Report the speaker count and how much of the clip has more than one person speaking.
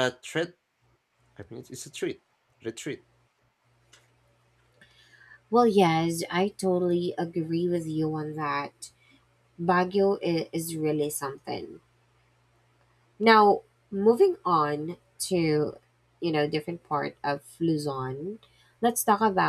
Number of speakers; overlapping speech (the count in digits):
2, no overlap